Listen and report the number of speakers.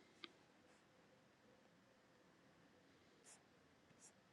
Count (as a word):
zero